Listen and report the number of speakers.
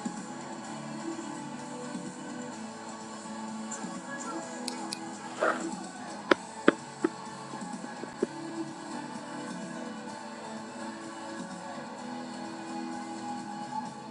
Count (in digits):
0